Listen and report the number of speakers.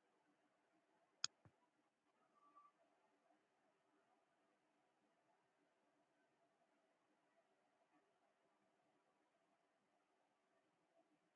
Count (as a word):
zero